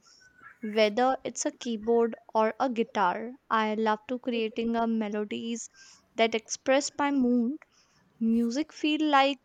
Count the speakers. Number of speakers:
one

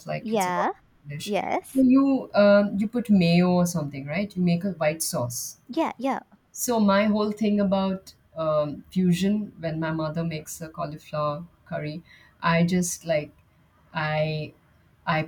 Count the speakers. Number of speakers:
two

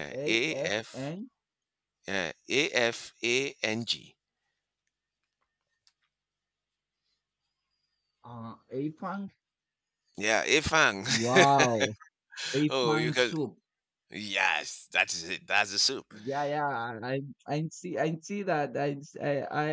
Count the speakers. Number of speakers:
two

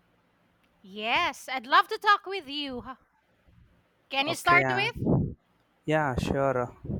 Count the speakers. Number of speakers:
two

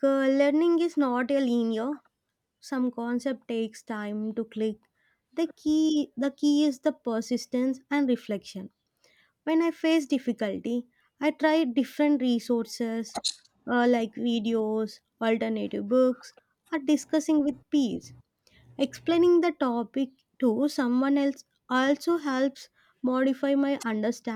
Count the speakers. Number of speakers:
one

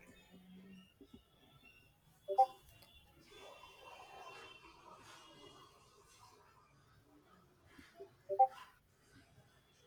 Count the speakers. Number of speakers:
zero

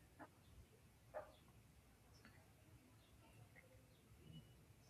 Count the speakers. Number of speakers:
zero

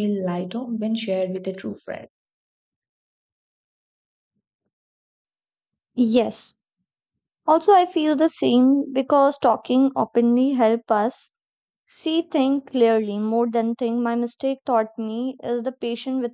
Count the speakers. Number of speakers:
two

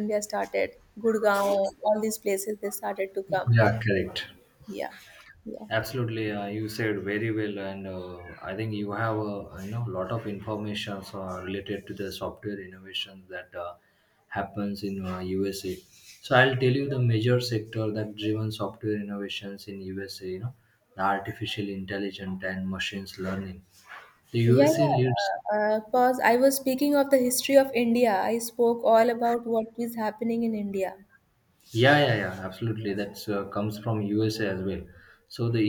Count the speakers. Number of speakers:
two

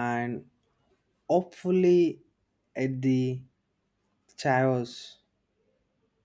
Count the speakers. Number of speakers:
one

